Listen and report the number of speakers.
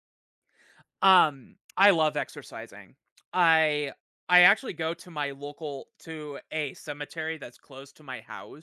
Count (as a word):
one